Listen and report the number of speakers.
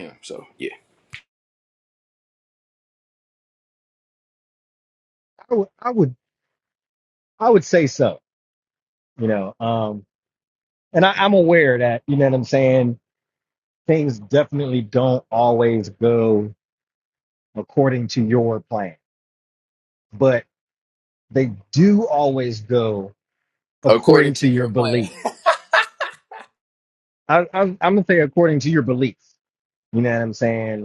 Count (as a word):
two